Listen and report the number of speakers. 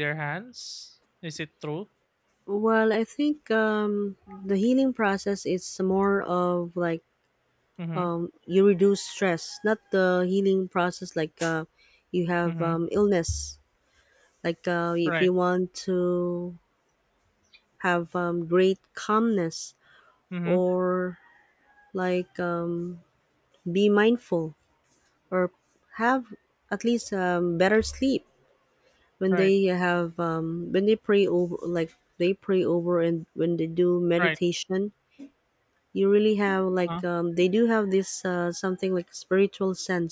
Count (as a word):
two